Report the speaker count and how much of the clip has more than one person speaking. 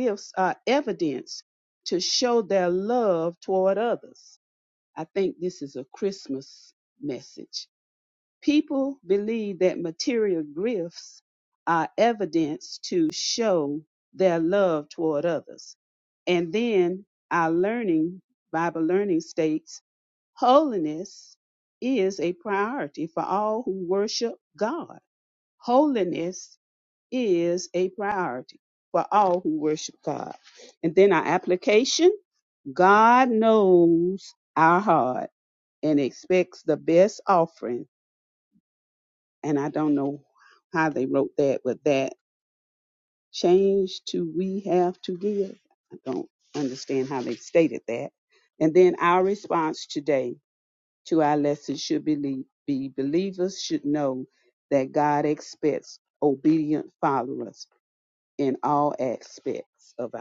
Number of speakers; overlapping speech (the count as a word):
one, no overlap